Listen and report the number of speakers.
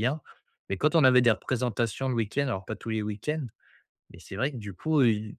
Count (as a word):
one